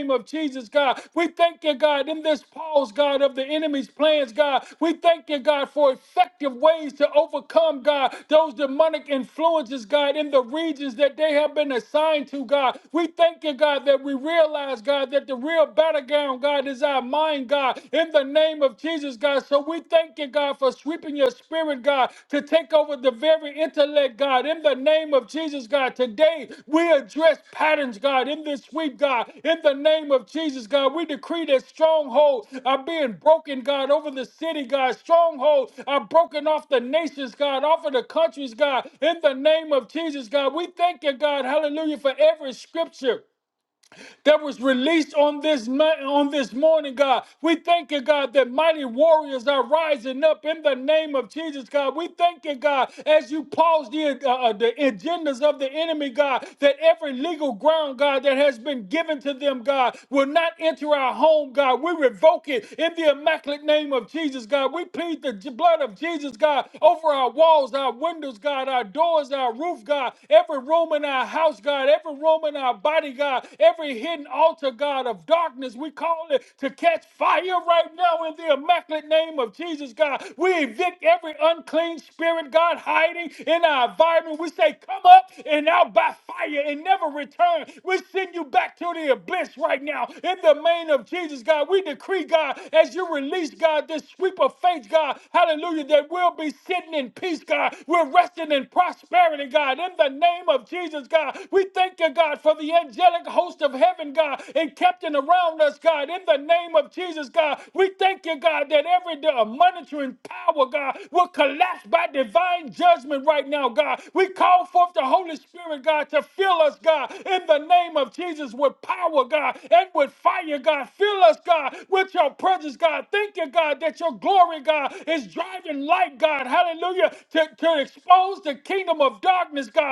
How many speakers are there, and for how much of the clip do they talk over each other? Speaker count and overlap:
1, no overlap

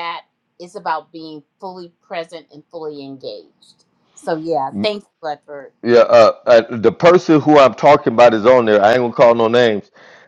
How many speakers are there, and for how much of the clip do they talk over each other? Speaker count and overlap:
2, no overlap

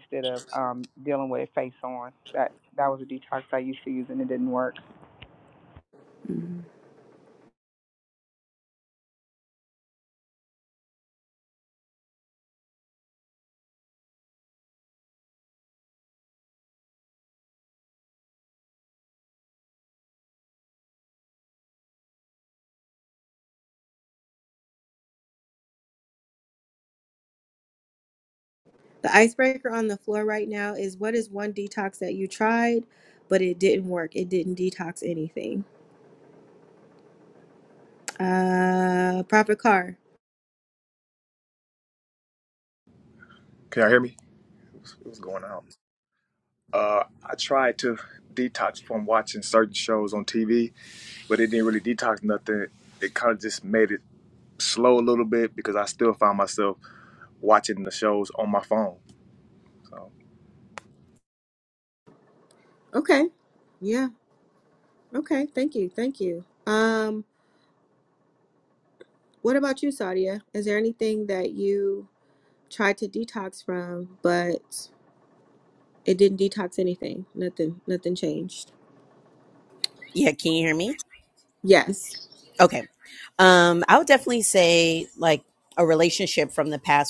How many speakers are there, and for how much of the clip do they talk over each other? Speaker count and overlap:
4, no overlap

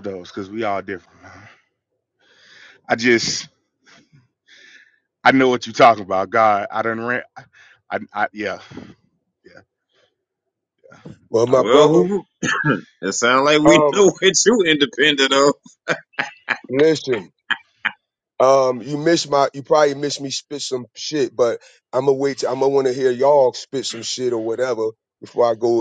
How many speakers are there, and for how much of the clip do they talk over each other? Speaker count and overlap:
3, about 4%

